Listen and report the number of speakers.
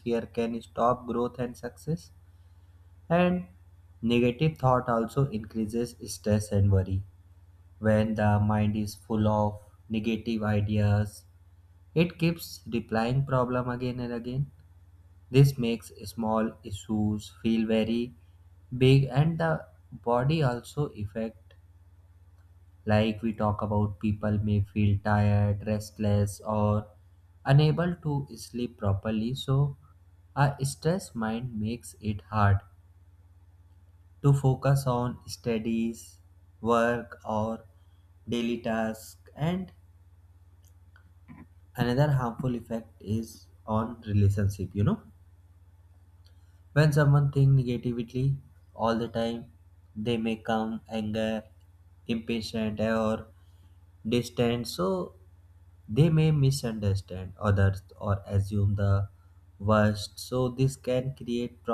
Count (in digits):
1